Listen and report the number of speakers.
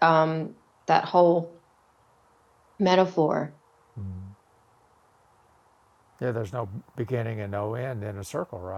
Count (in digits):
2